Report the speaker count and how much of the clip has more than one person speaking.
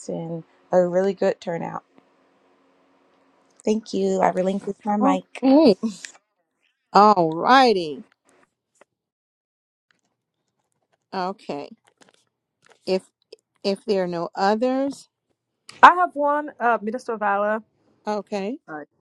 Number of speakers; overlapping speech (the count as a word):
three, about 2%